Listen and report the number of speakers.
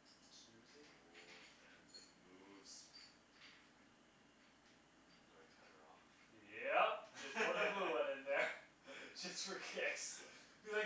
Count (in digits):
2